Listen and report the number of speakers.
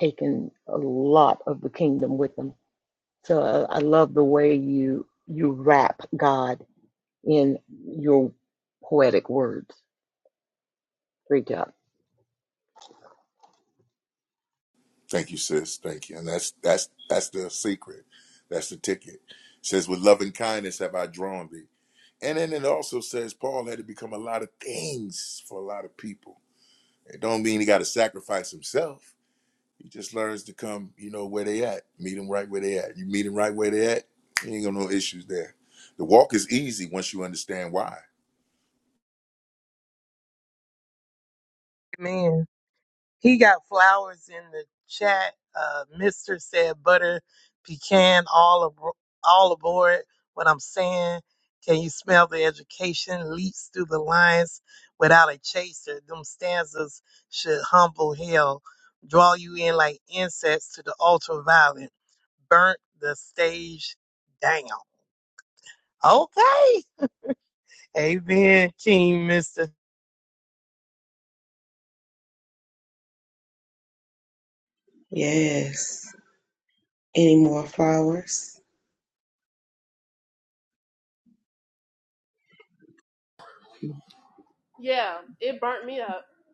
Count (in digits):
5